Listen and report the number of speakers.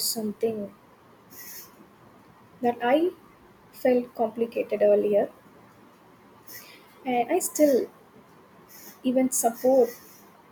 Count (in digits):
1